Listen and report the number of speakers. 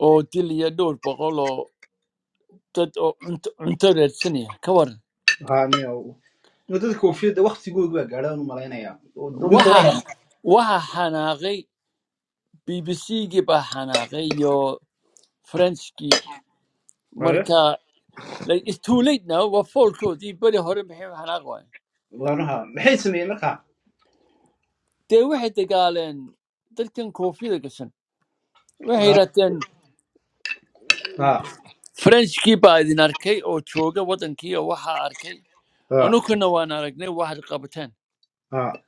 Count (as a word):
two